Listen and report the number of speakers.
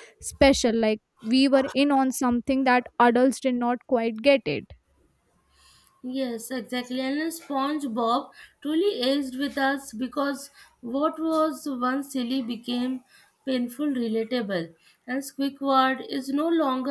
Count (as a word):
two